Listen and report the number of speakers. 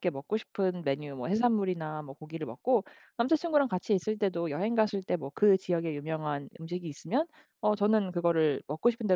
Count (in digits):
1